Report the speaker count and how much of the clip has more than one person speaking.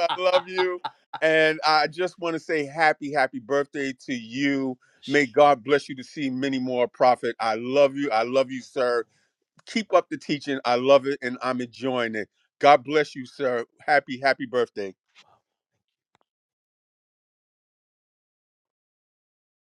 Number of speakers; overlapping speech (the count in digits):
1, no overlap